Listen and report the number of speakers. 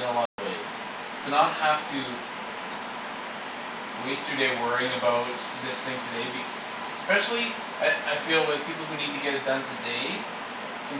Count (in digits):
1